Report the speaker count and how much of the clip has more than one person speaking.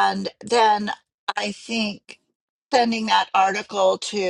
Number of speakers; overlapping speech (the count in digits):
1, no overlap